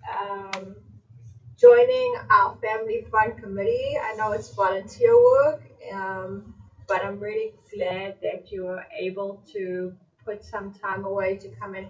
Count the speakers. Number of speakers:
1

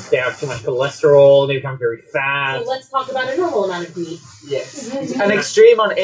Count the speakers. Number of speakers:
3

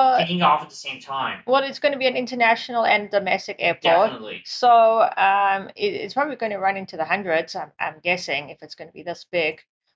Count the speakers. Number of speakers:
2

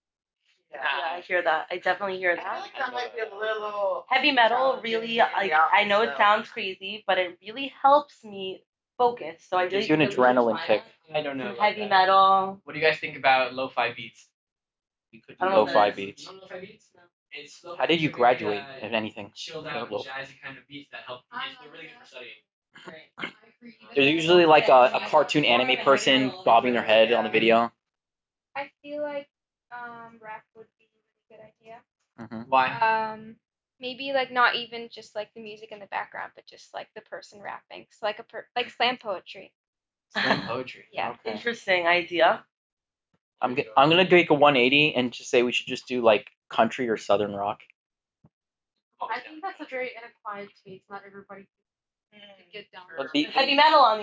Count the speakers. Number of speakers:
6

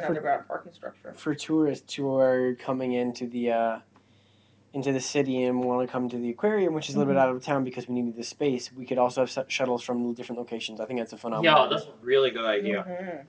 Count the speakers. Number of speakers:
3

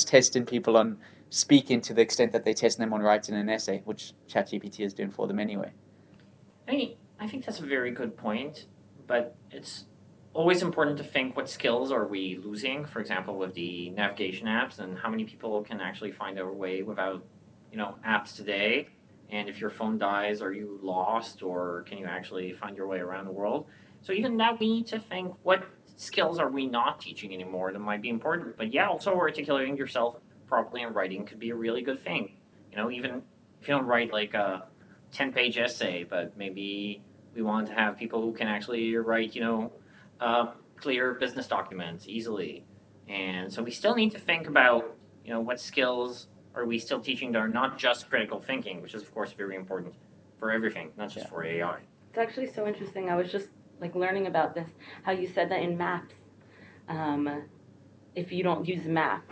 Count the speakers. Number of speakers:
3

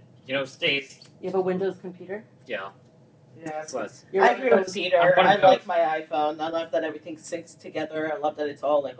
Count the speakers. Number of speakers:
3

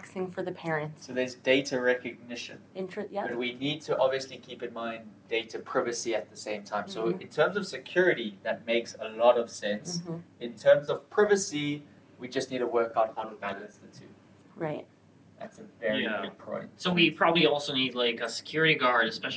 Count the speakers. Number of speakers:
3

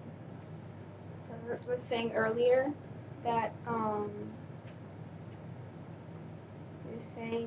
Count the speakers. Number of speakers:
1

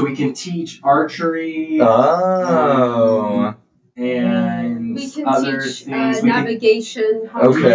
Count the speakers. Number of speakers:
3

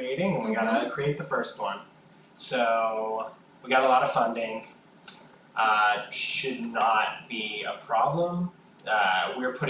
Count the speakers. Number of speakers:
1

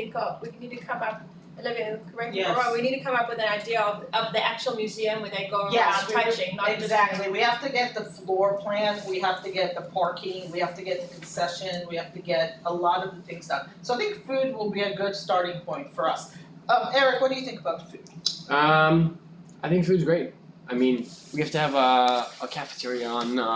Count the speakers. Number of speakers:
3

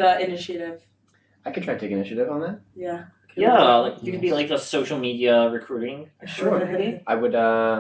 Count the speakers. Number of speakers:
3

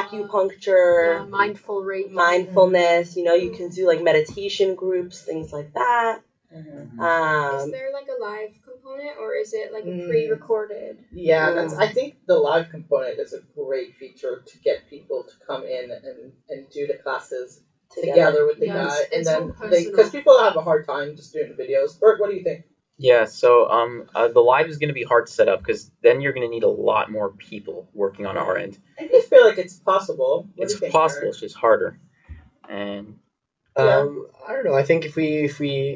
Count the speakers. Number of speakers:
6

